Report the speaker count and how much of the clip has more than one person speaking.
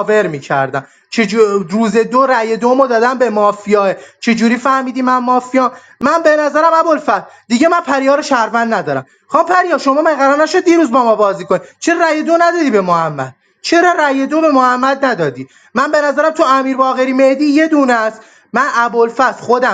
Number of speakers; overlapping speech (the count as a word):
one, no overlap